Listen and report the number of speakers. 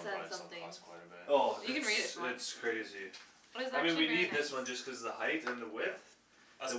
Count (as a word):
three